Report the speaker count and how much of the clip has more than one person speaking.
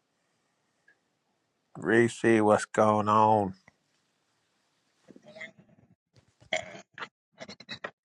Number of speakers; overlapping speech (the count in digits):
1, no overlap